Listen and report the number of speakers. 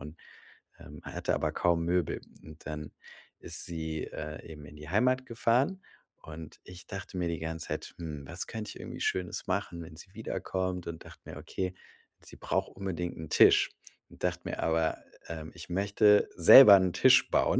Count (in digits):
1